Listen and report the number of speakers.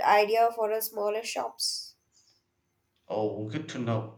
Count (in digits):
2